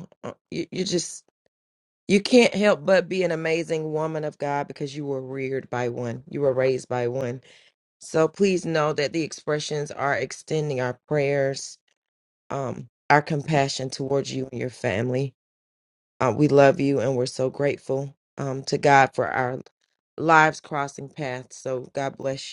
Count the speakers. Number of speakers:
1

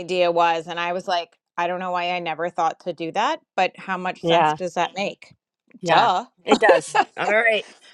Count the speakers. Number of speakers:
2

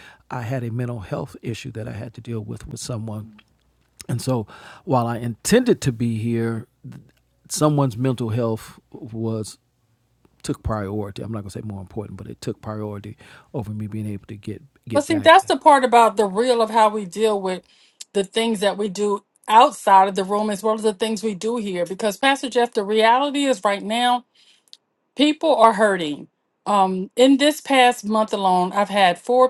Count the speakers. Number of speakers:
2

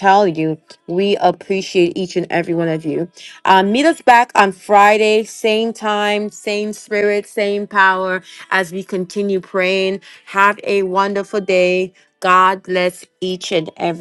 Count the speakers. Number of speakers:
1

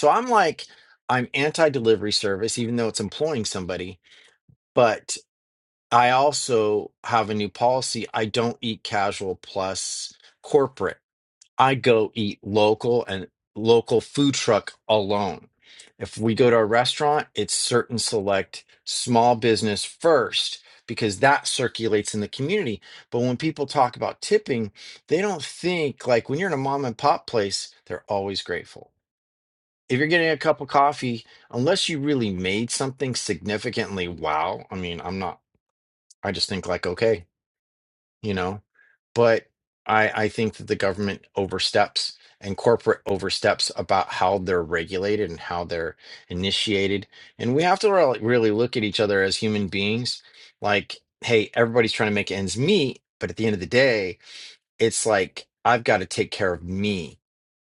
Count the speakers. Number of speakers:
1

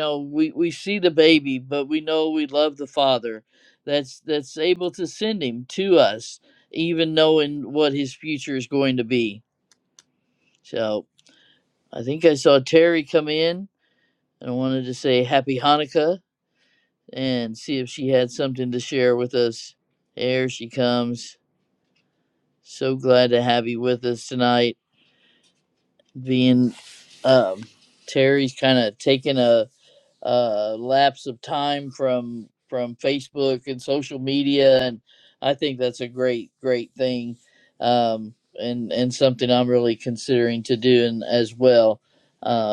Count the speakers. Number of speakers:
1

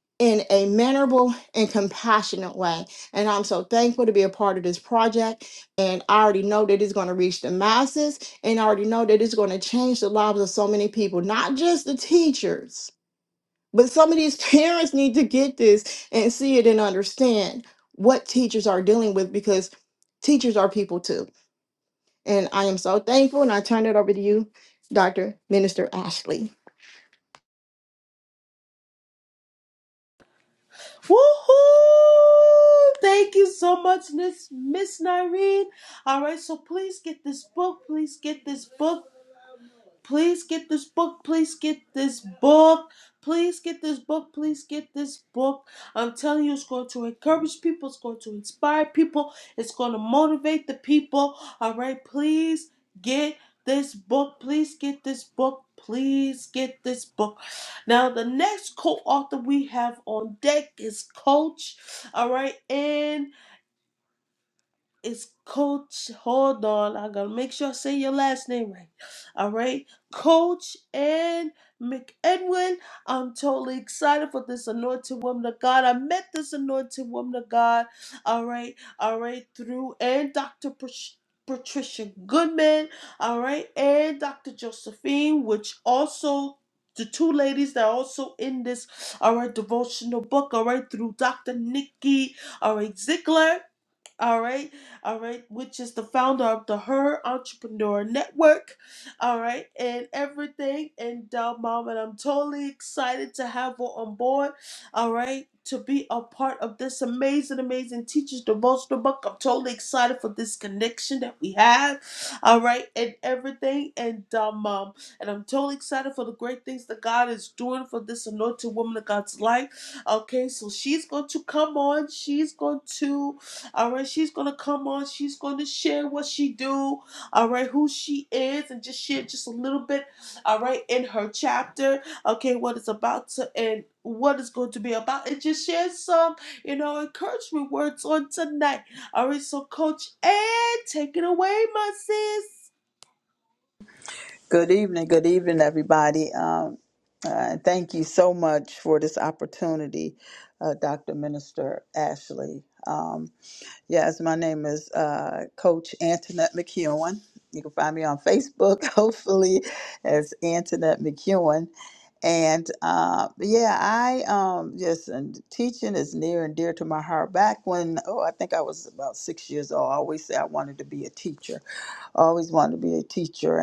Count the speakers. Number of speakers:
3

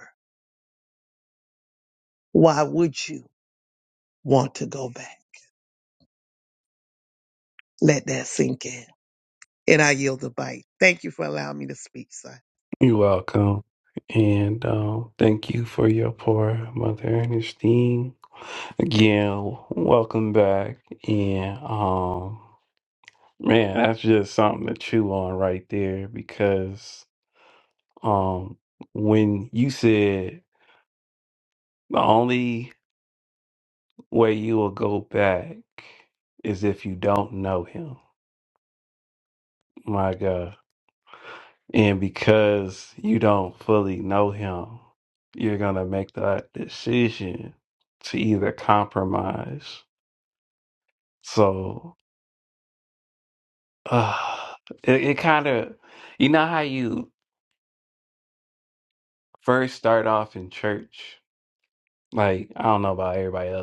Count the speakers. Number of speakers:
2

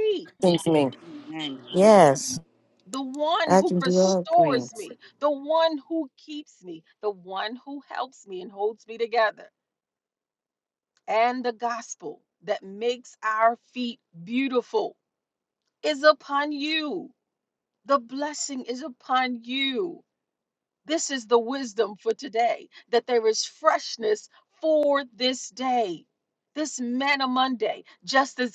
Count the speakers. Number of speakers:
3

